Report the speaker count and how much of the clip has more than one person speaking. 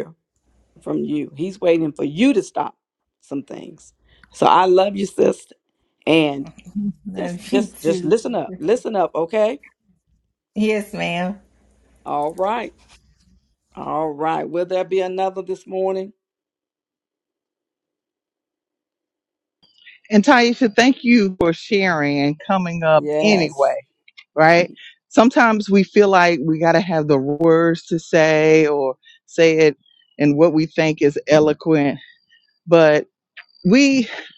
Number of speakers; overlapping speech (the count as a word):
three, about 4%